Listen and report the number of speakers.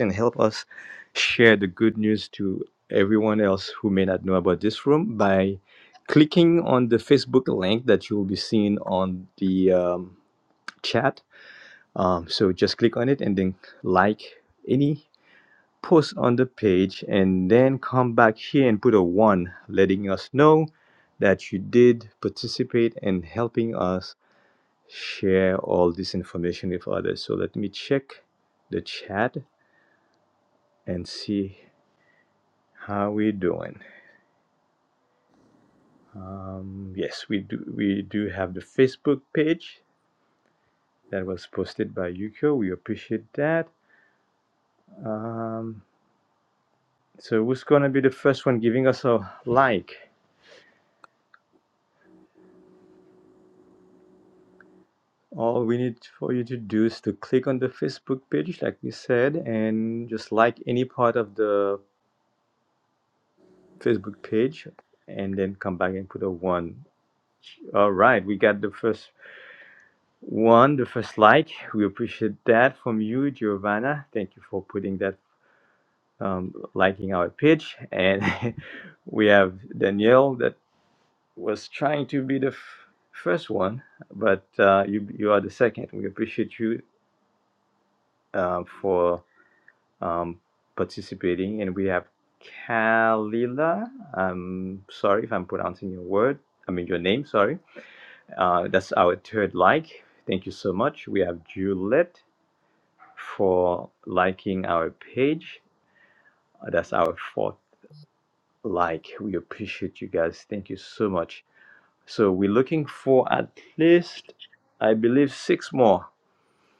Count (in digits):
1